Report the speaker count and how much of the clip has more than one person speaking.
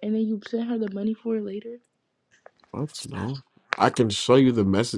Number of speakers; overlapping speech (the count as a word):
two, no overlap